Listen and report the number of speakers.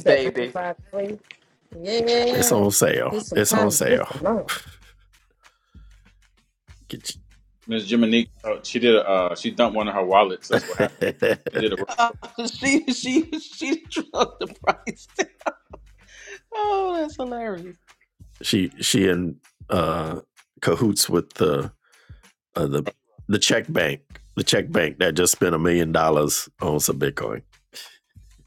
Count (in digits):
4